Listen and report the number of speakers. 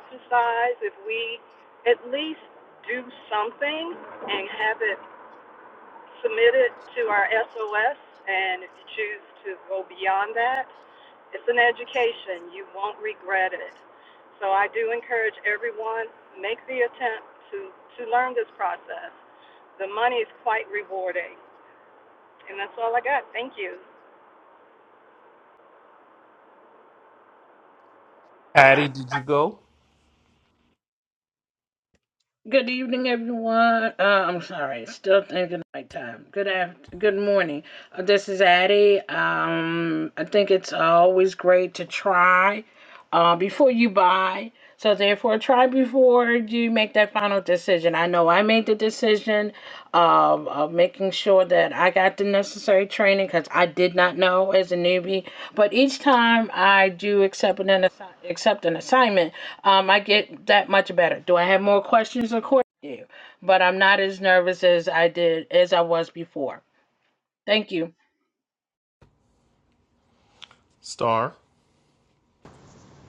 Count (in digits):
3